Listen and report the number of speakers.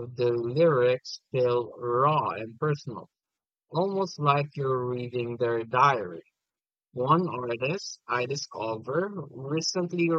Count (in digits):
1